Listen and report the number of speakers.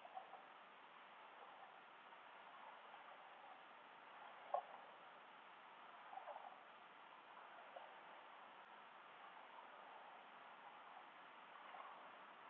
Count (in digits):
0